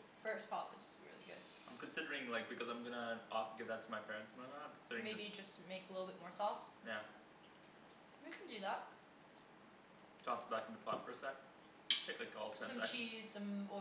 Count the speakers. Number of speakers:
2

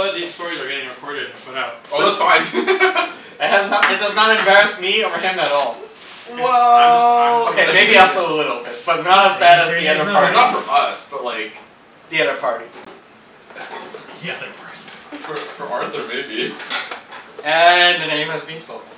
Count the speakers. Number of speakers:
3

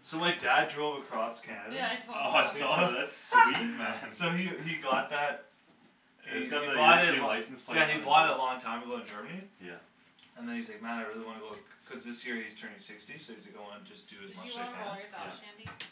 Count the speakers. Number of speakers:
3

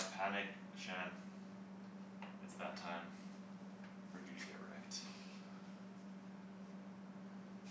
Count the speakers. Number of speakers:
1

